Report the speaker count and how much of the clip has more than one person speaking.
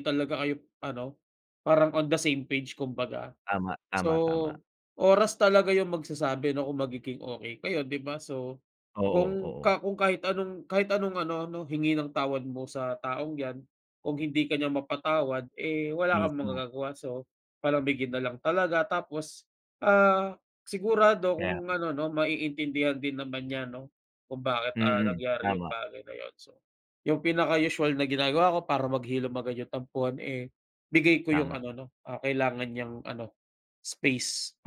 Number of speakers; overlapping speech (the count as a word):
two, about 9%